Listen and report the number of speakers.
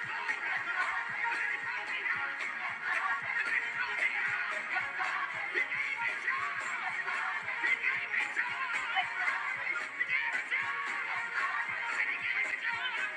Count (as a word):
zero